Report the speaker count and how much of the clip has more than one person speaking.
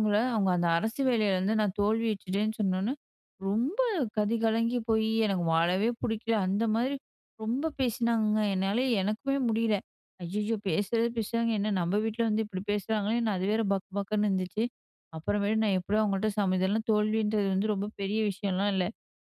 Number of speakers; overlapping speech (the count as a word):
one, no overlap